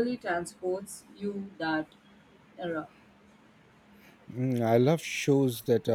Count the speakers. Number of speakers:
2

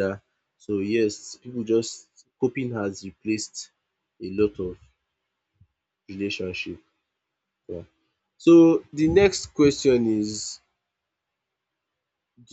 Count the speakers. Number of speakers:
1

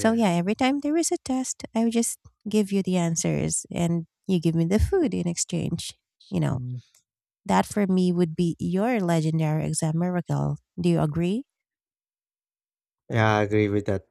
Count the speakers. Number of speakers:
2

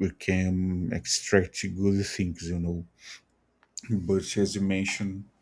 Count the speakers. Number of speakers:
1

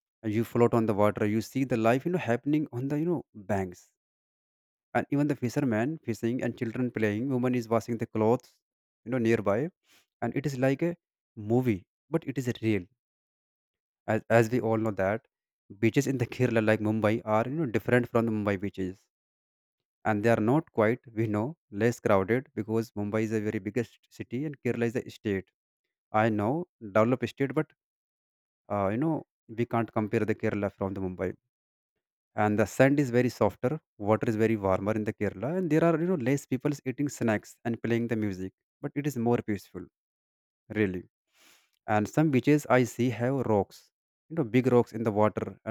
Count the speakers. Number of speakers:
1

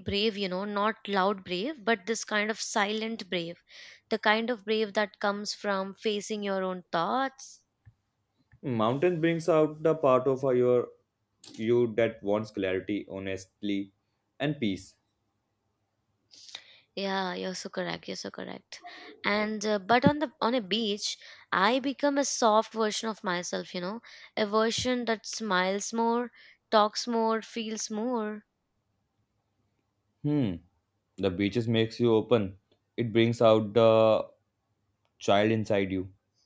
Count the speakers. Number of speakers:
2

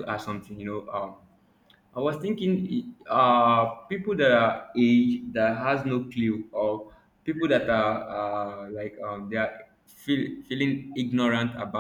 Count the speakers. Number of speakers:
1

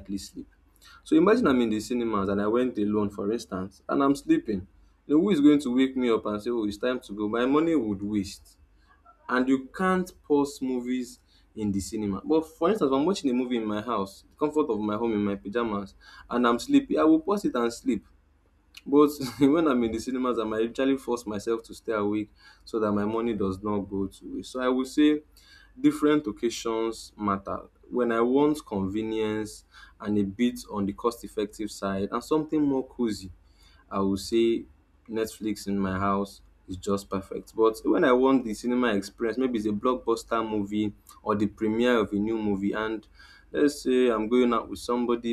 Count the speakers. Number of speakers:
1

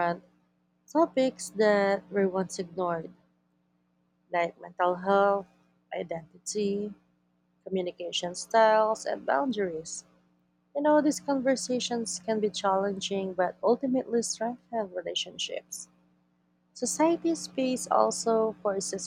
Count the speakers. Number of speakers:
1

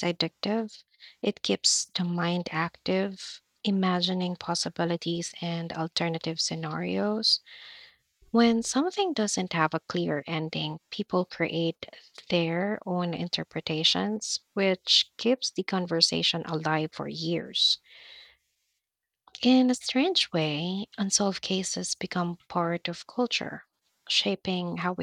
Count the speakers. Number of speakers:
1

